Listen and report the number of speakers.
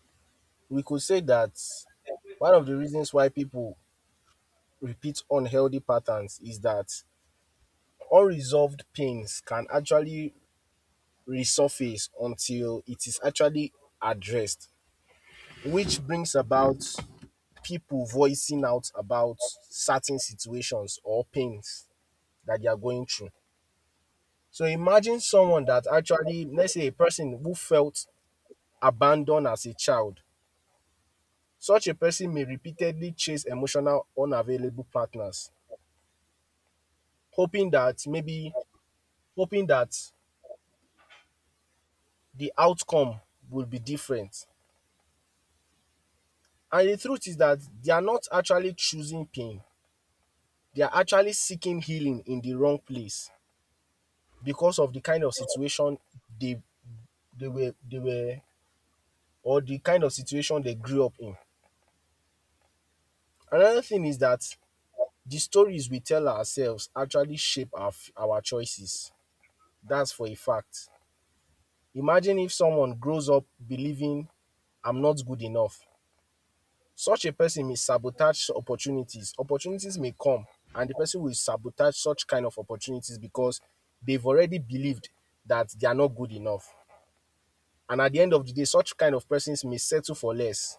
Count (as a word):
one